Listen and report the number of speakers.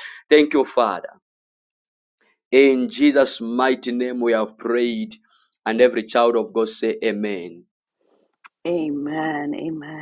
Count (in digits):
2